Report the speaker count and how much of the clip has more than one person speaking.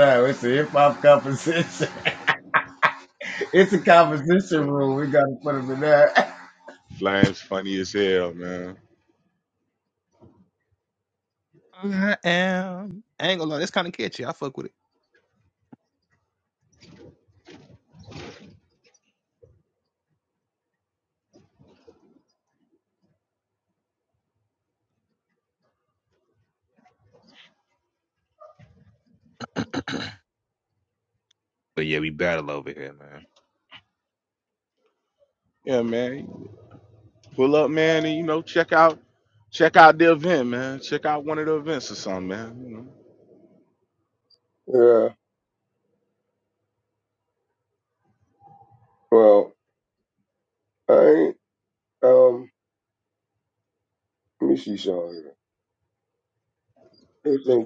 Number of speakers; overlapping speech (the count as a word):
four, under 1%